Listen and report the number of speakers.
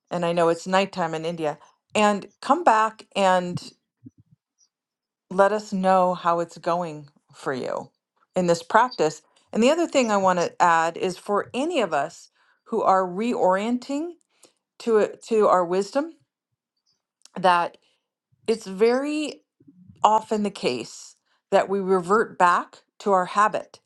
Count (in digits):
1